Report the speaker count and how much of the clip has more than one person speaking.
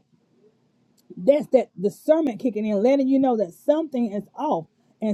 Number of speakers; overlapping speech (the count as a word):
one, no overlap